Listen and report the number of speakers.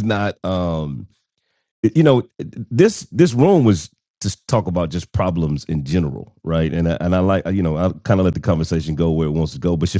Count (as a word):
one